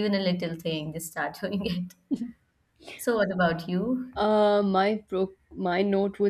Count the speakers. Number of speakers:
2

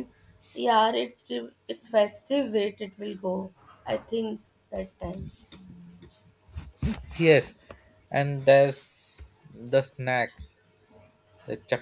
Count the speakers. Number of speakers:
2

